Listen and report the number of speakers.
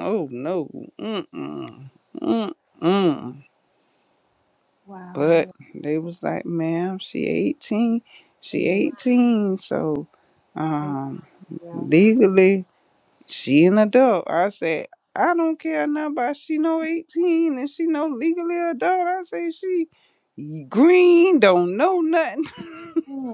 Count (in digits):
2